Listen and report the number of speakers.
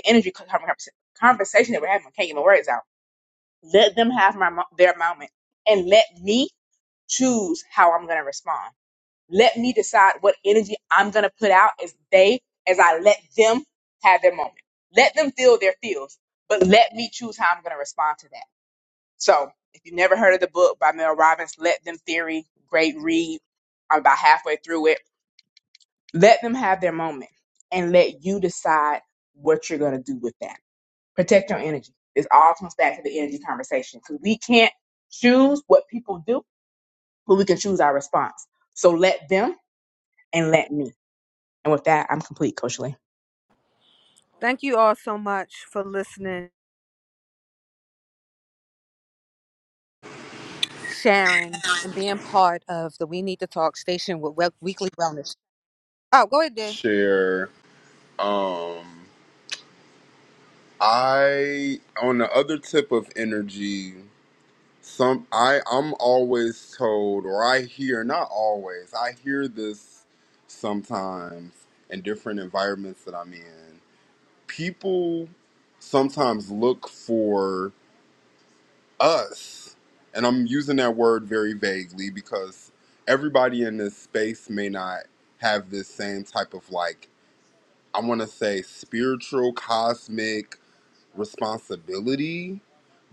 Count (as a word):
three